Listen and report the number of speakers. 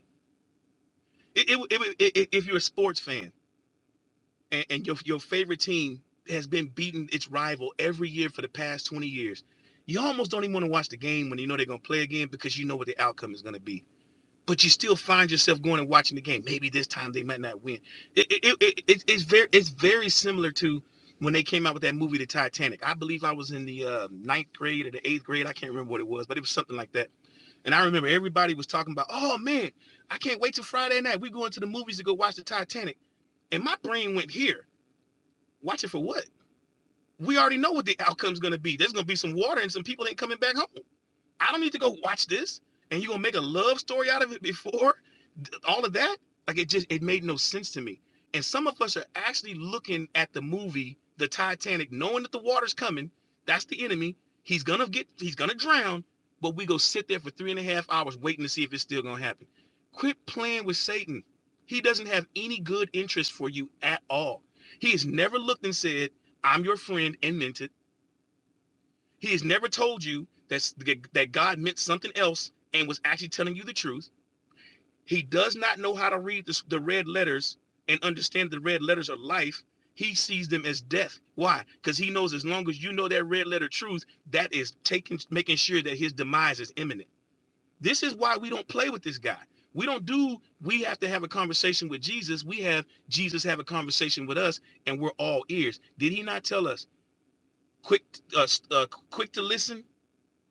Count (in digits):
1